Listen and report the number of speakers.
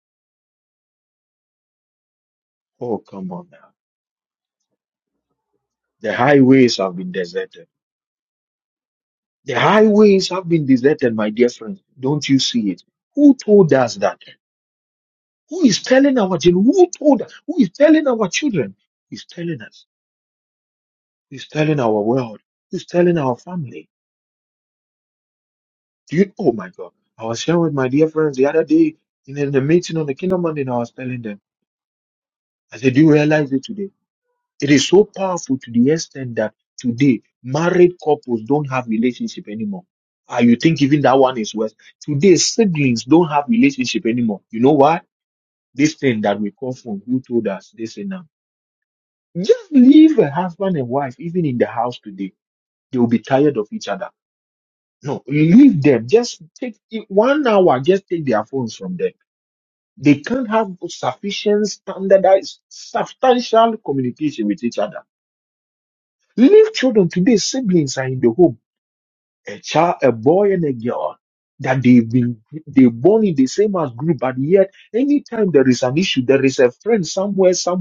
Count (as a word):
one